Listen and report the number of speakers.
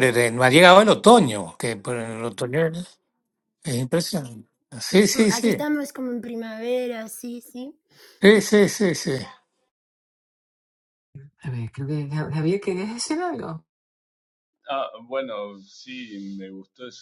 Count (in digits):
4